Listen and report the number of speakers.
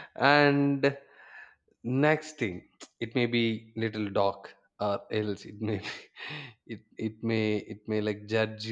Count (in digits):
1